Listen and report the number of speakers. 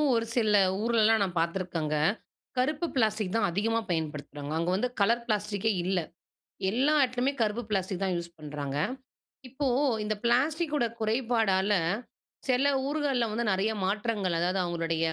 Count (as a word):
one